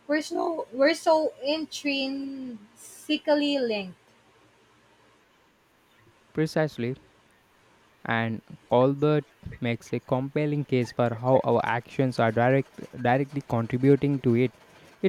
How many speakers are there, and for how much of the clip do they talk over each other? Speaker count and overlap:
two, no overlap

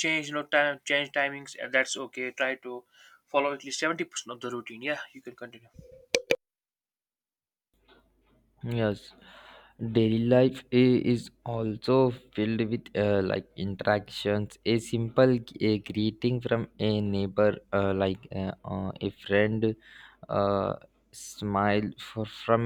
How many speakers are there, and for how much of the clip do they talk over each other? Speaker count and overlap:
two, no overlap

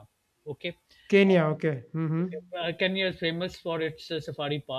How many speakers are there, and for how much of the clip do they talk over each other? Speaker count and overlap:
two, about 8%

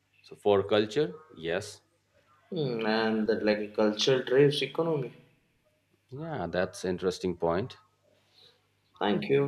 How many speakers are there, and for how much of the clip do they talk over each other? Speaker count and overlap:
two, no overlap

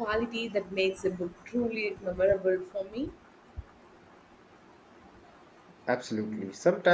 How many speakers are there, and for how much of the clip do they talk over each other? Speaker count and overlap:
two, no overlap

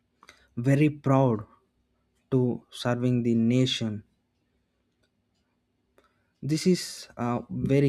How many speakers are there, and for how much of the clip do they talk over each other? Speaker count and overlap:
one, no overlap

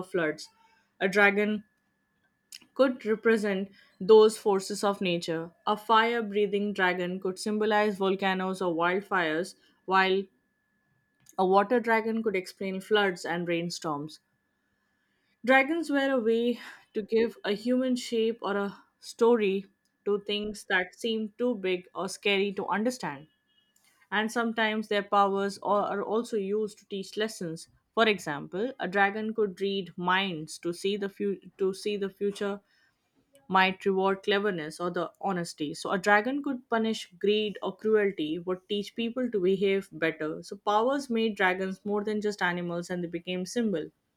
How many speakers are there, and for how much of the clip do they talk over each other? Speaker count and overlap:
one, no overlap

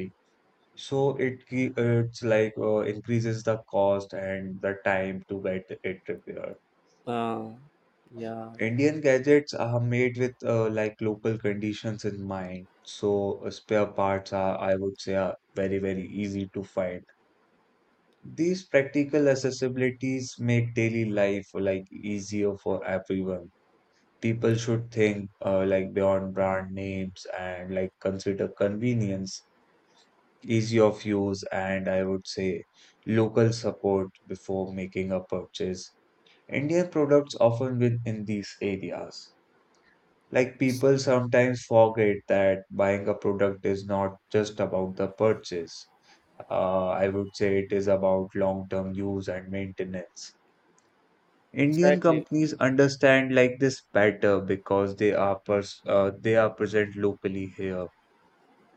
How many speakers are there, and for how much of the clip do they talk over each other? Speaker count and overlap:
two, about 1%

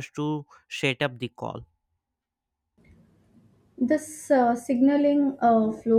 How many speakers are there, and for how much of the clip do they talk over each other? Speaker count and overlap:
two, no overlap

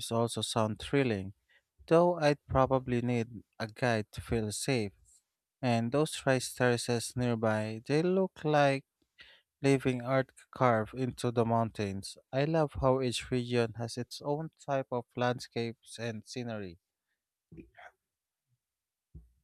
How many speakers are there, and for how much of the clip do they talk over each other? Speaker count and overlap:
one, no overlap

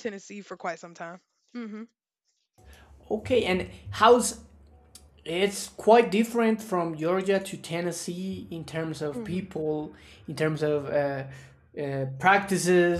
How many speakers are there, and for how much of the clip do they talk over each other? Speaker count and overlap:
two, about 2%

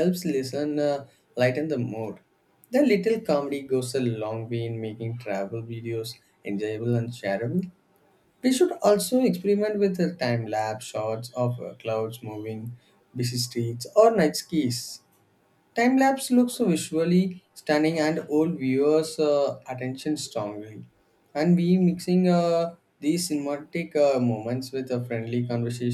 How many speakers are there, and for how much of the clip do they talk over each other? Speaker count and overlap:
one, no overlap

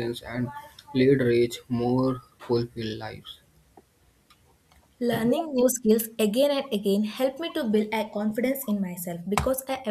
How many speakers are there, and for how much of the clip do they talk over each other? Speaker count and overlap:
two, no overlap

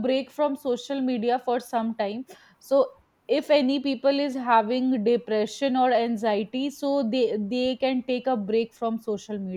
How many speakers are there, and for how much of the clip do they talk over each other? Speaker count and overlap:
one, no overlap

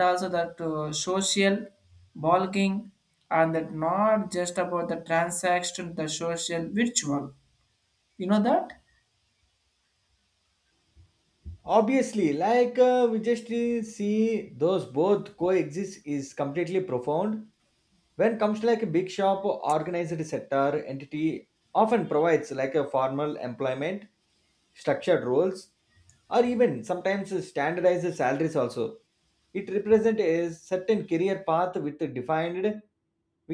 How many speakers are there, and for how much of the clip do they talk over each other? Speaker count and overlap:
two, no overlap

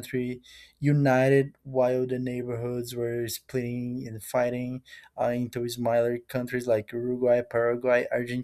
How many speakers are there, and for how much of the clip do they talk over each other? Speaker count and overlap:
one, no overlap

